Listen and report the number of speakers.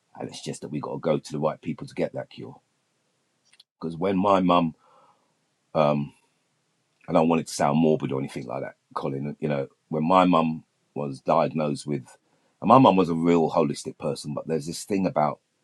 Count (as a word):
one